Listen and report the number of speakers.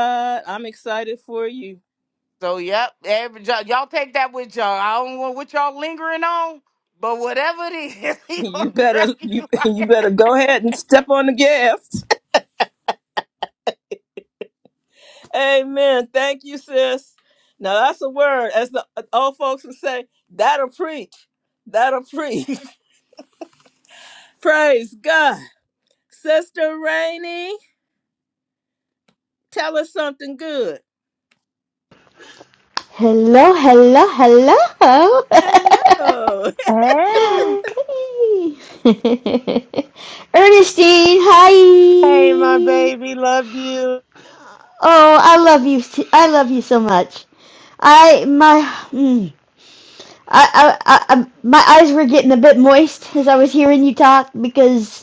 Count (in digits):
4